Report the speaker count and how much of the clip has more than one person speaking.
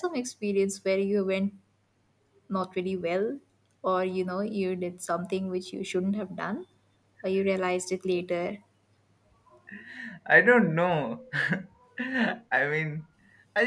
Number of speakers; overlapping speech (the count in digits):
2, no overlap